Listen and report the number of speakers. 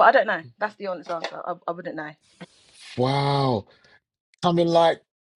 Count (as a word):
two